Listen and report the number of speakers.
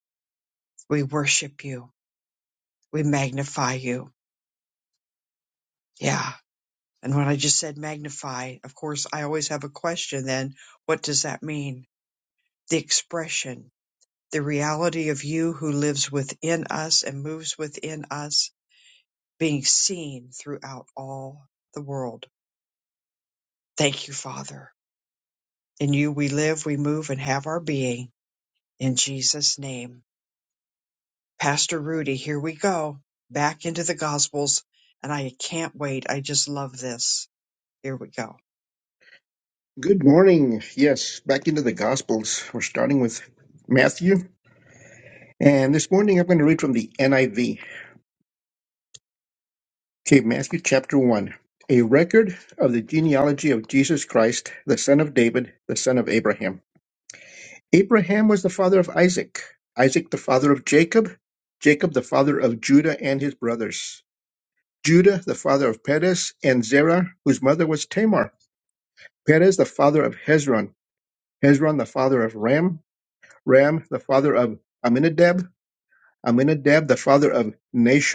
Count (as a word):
two